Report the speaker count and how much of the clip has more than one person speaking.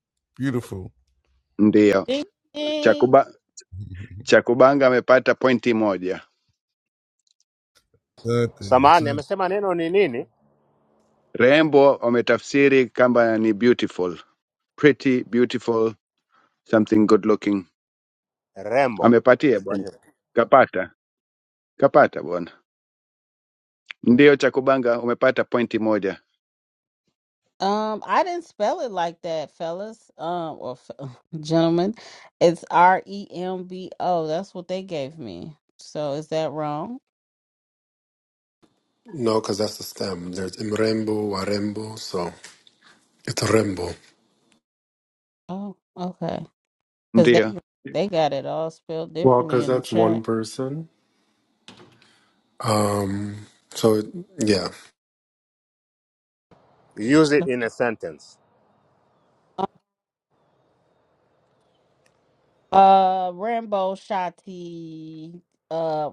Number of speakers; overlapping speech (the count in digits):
5, about 3%